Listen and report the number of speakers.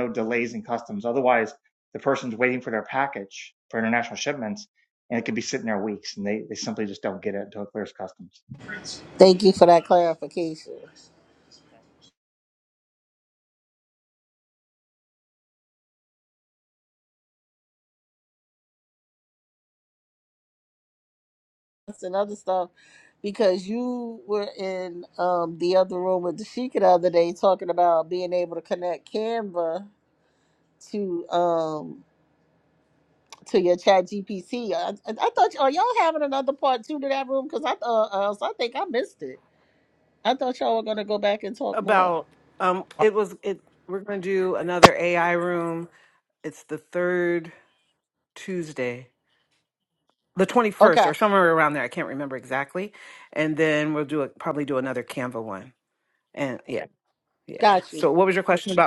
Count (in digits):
3